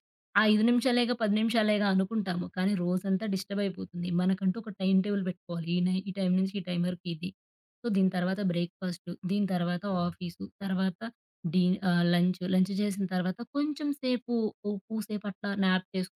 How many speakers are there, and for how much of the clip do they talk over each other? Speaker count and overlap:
1, no overlap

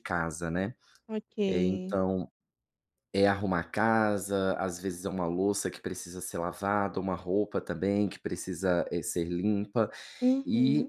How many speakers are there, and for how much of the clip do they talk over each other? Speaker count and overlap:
2, about 8%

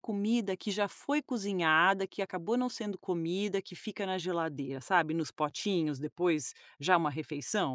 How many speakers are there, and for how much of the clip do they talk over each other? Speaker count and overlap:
1, no overlap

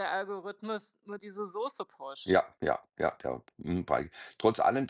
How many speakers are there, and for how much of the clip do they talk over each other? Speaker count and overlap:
2, about 1%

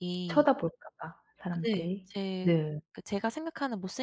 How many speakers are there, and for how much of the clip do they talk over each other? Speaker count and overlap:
2, about 15%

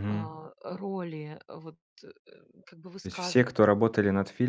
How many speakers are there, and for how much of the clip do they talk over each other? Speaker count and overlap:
2, about 16%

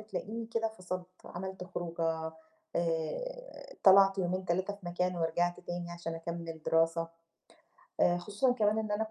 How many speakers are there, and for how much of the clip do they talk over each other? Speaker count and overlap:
1, no overlap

